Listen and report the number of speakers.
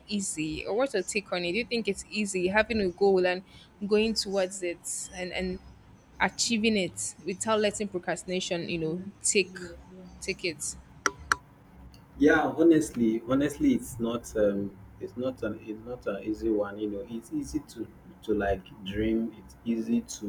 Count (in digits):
2